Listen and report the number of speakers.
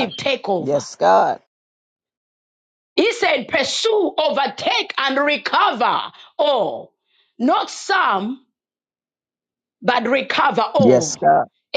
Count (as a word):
two